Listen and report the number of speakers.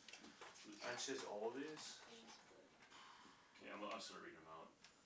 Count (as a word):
two